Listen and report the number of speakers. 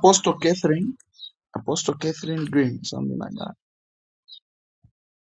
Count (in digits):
1